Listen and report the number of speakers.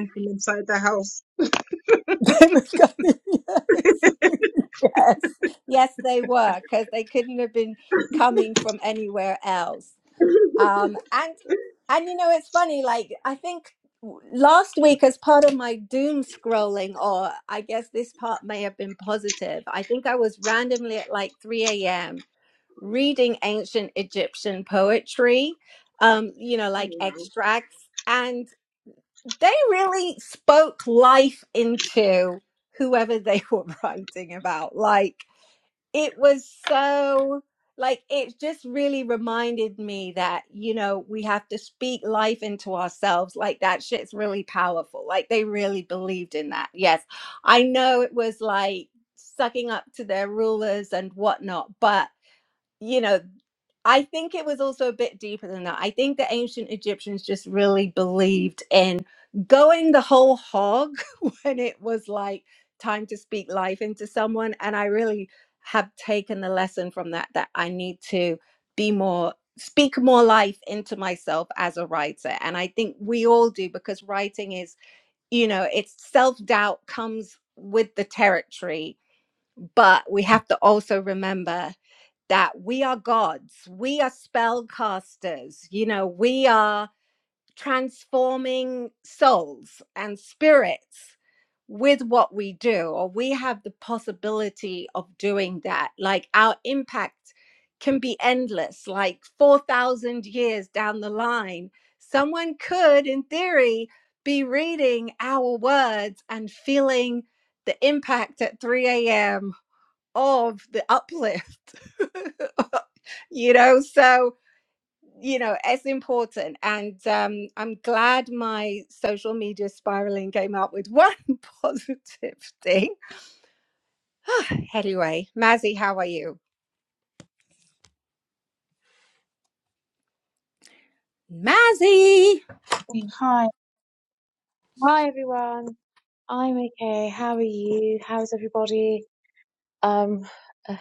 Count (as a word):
three